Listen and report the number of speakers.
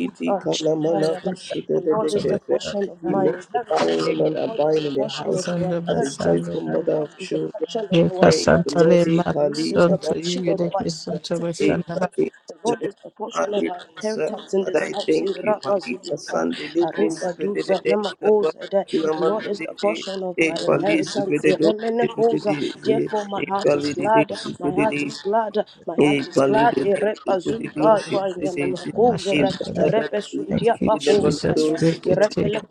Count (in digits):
3